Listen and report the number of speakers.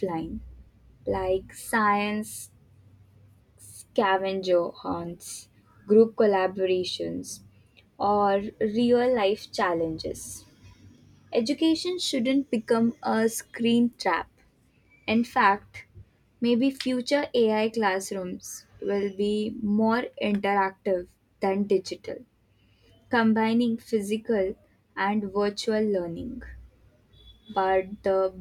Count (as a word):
one